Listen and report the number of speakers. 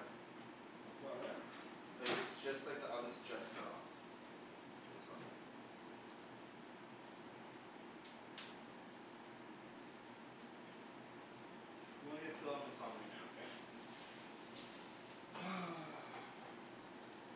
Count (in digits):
2